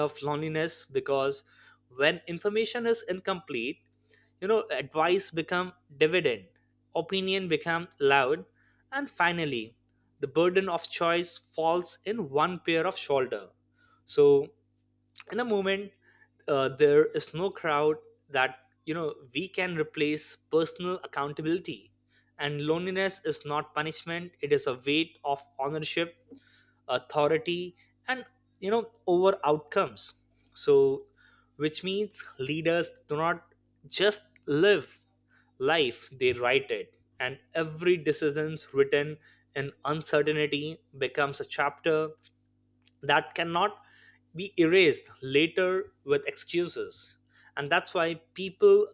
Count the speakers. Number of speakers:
1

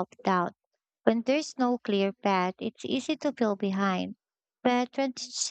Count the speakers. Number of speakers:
1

